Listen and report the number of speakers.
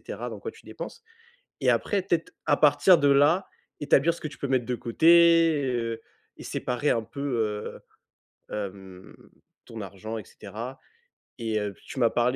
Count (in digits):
1